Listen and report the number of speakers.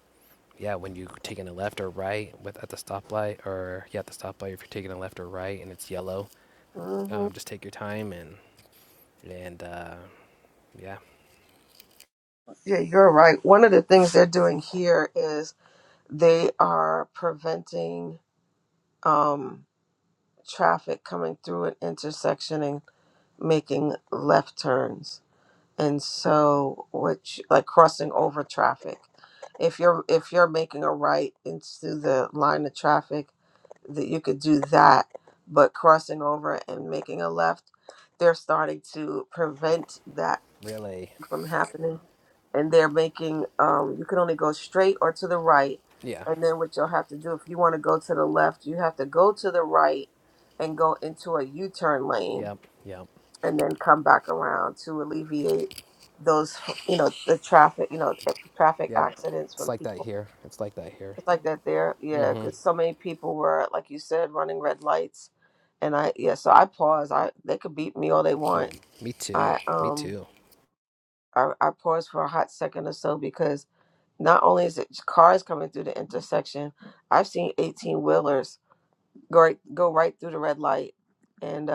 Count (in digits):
2